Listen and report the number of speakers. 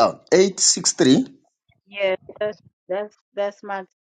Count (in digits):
2